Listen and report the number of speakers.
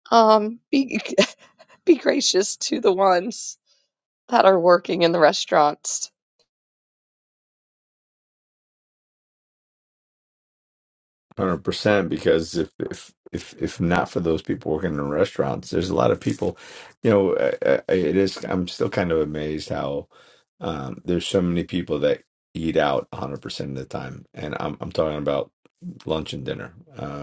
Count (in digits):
2